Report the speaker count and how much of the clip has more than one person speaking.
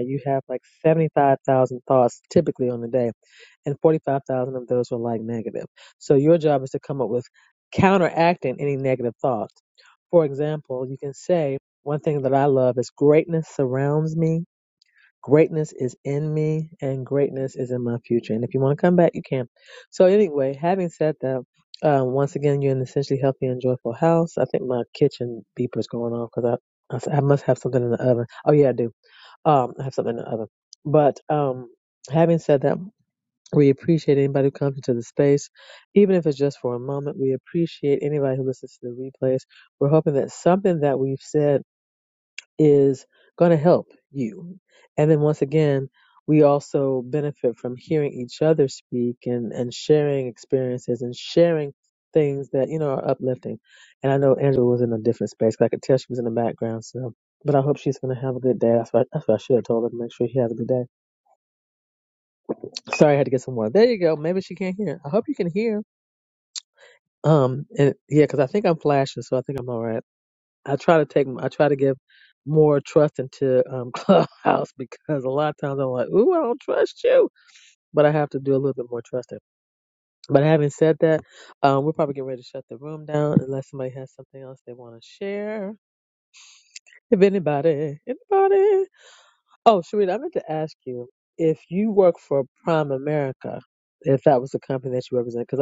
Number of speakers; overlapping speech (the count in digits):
1, no overlap